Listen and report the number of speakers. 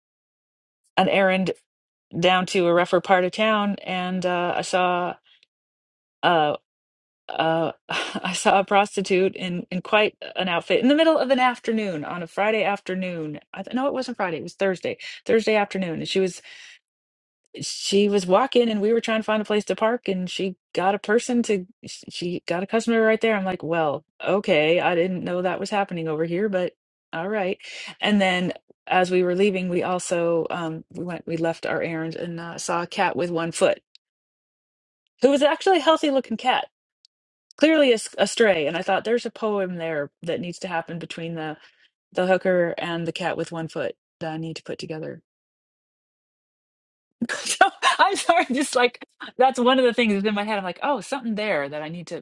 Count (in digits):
1